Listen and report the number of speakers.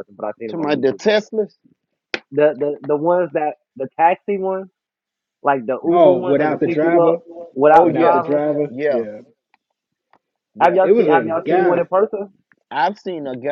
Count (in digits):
3